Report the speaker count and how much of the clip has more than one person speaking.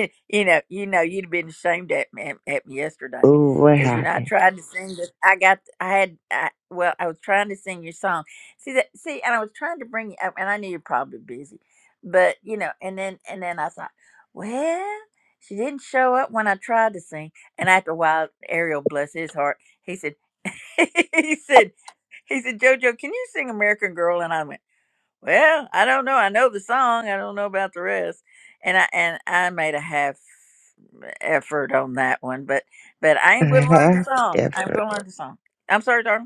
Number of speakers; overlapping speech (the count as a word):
two, about 5%